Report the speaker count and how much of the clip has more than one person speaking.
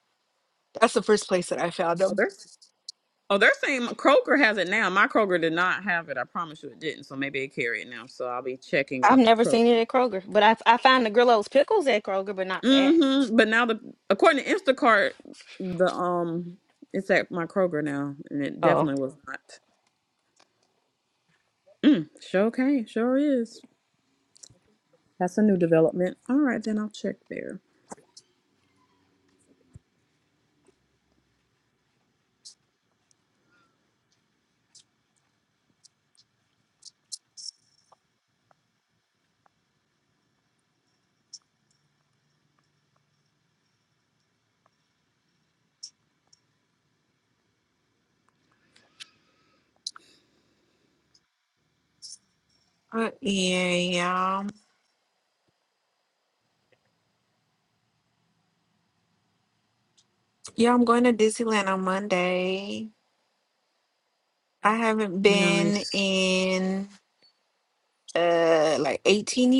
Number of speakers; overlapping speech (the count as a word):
three, about 3%